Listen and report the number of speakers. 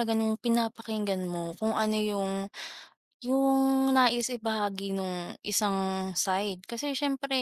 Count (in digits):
1